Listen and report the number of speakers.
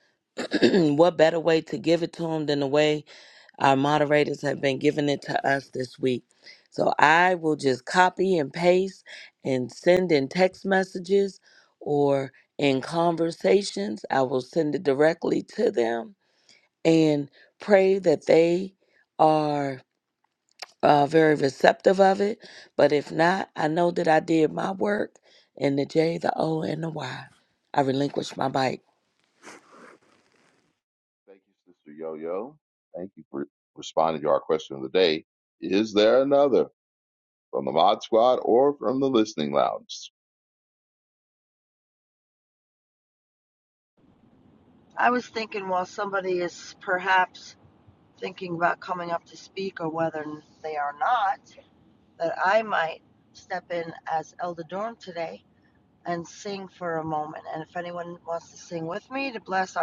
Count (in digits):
3